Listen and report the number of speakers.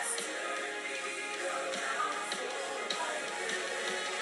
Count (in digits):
0